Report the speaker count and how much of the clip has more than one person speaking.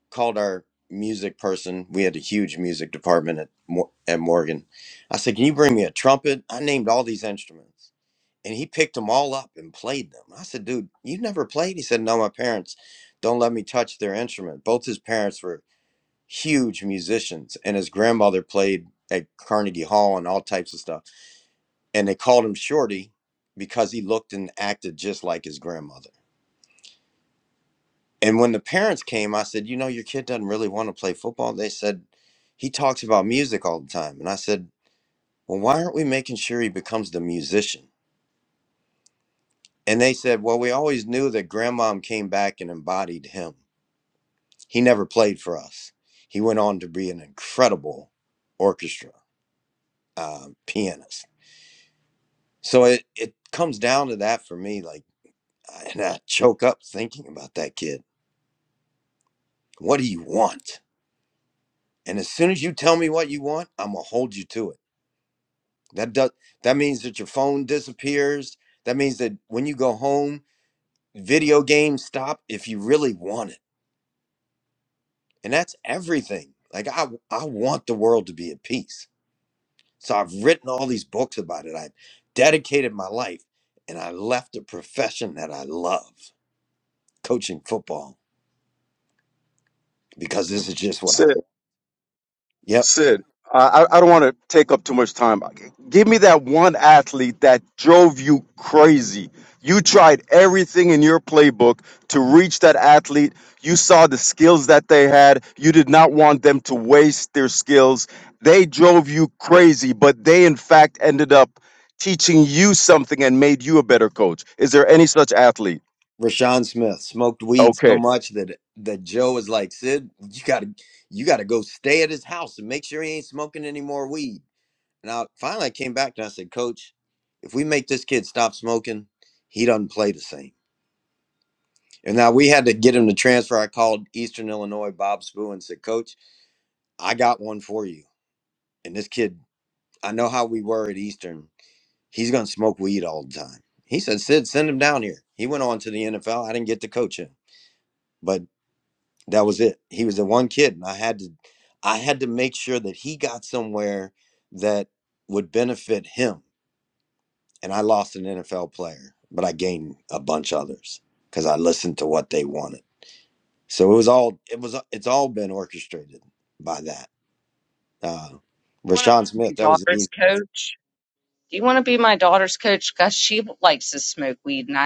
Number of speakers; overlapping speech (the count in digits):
3, about 1%